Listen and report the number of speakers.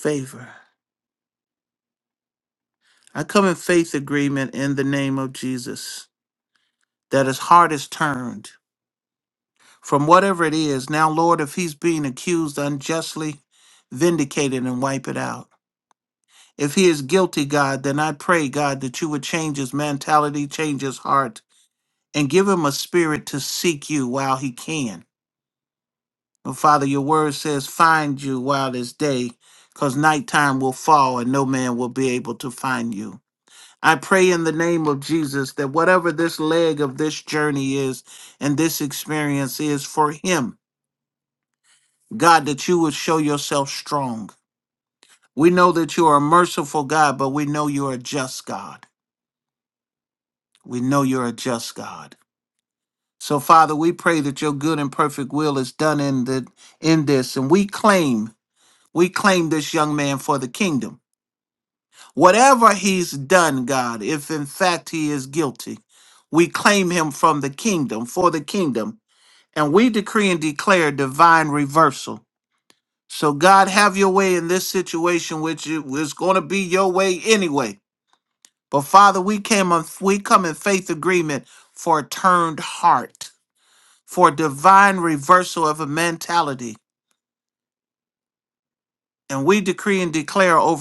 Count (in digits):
1